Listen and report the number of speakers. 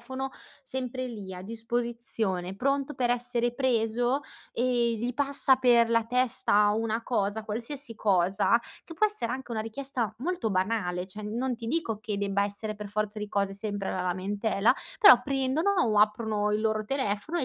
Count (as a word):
one